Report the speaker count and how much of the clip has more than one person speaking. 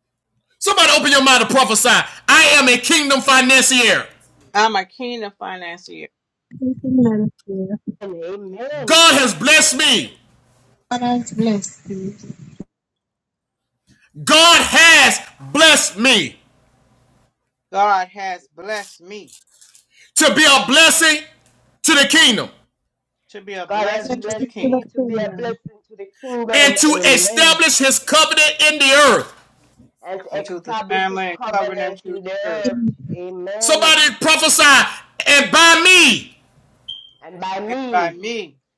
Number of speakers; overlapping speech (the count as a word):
four, about 17%